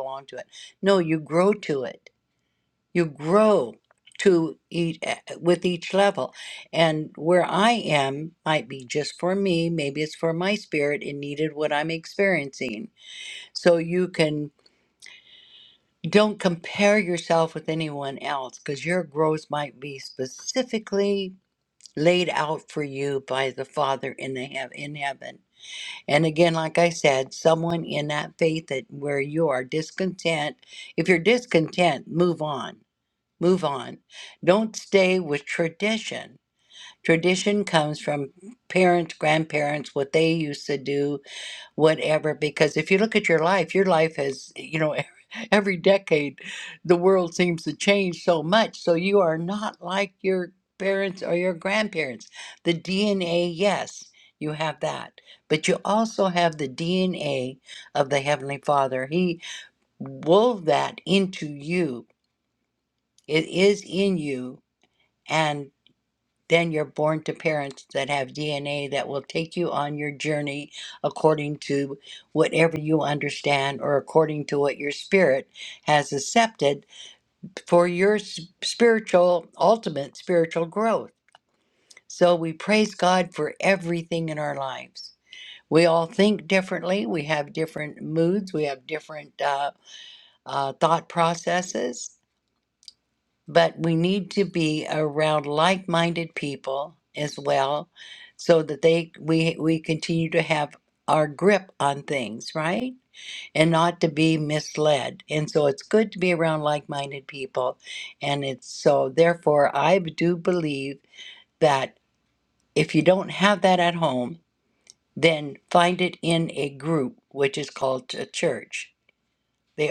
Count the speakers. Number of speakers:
one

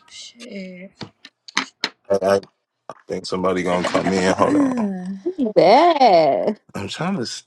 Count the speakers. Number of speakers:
three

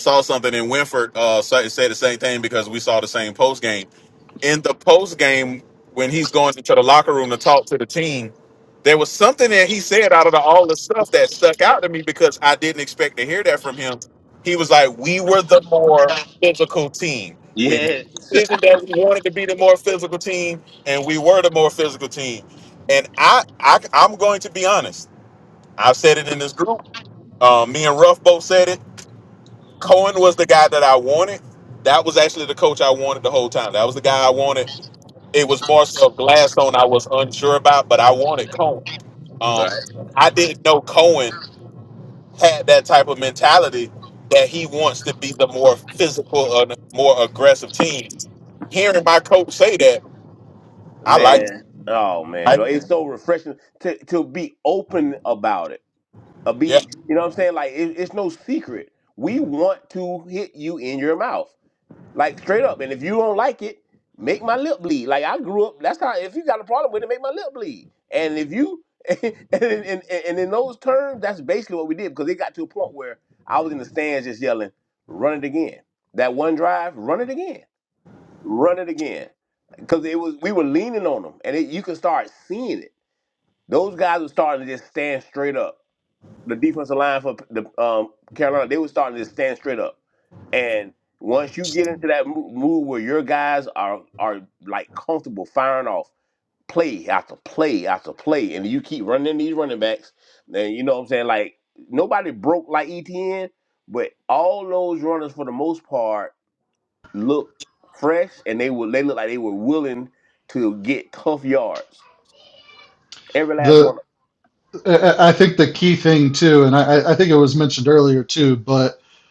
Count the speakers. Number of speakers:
three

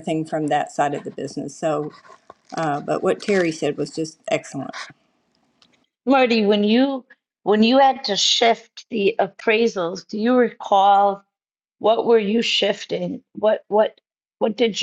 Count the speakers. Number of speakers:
two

